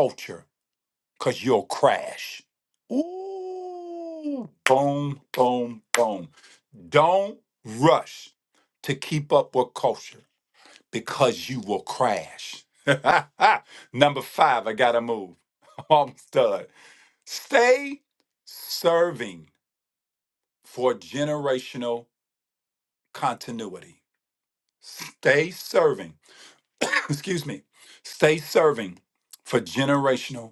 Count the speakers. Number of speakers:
1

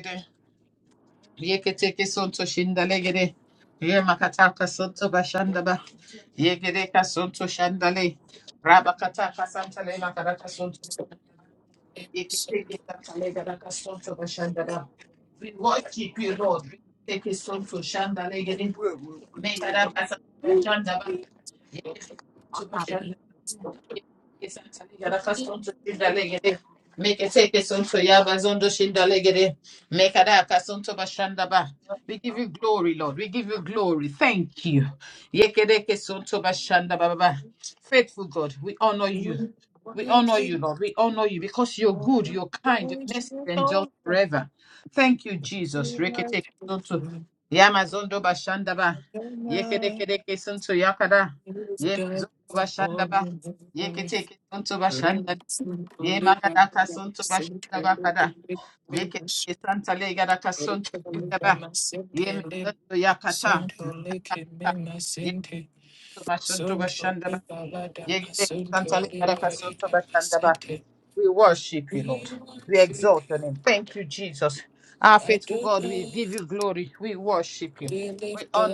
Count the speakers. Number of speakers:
2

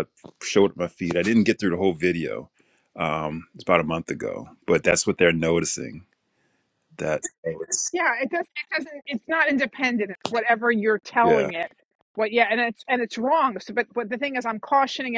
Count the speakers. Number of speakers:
2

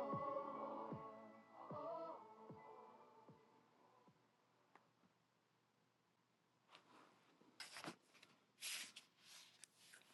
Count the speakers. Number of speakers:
0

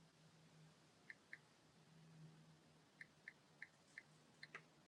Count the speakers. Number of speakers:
0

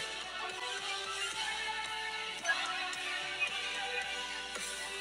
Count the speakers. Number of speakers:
0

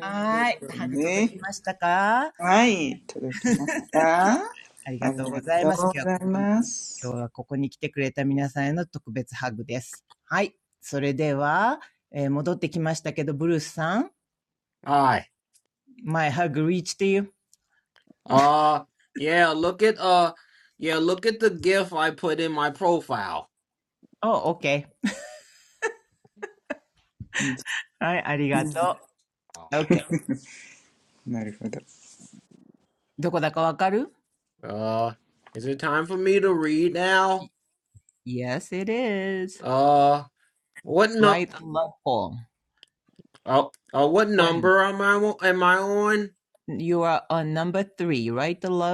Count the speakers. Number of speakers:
3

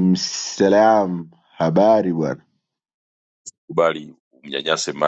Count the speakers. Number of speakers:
2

